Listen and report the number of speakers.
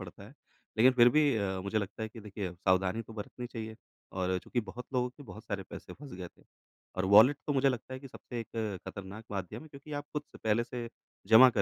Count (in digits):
1